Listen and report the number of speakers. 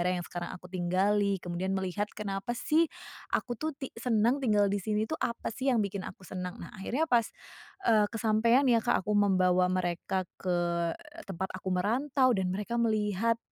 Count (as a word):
one